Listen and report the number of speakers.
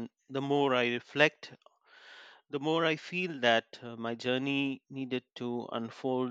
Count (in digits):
1